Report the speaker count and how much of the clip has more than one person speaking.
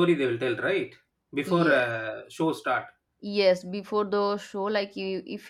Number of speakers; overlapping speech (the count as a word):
two, about 8%